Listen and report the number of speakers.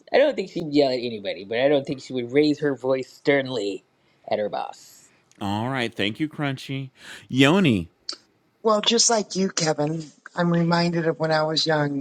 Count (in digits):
3